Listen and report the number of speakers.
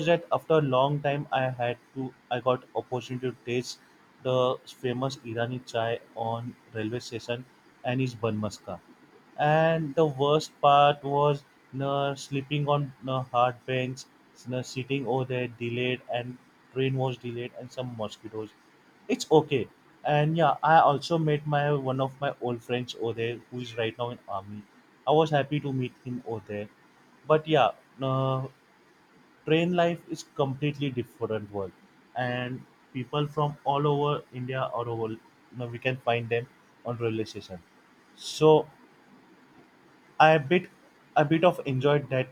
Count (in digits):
1